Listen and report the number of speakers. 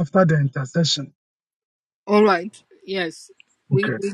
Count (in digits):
2